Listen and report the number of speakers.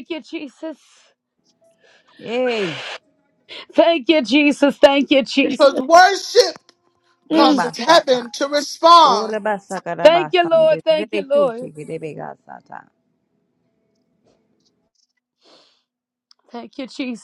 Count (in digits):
3